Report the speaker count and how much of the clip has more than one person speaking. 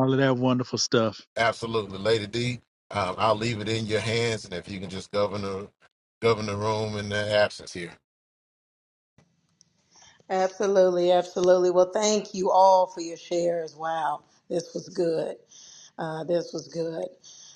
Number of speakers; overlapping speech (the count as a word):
three, no overlap